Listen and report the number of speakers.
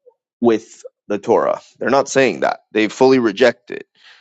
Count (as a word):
one